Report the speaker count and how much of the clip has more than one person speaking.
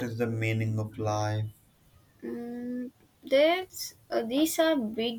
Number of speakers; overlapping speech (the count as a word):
two, no overlap